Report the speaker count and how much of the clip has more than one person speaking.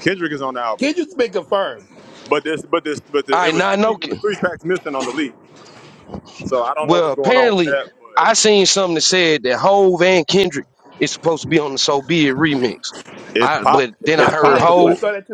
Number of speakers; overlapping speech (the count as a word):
three, about 23%